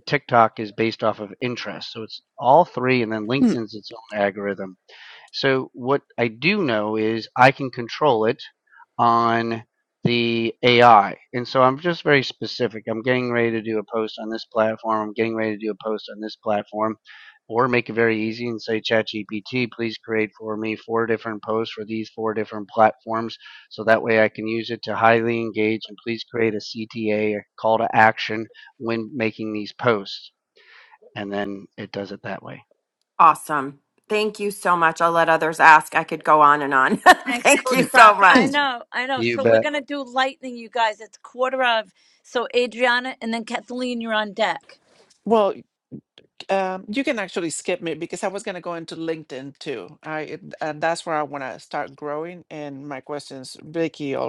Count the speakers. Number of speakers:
four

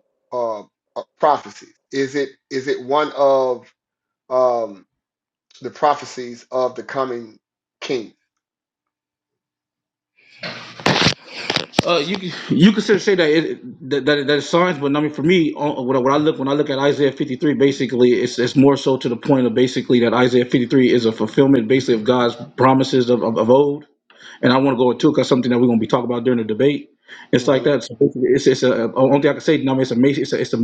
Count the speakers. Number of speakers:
two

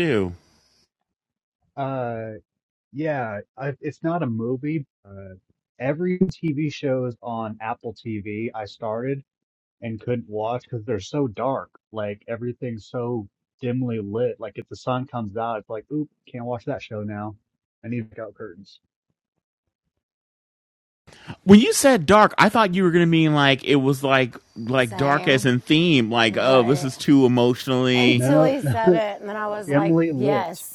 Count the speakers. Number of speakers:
three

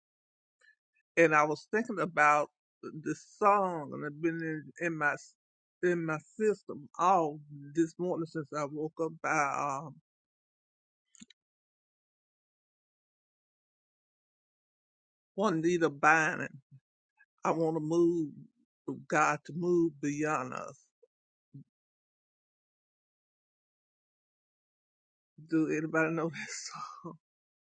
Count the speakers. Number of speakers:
one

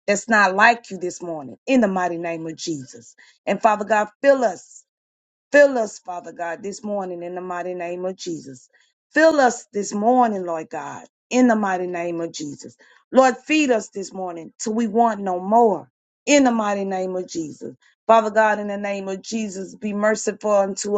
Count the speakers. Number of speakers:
one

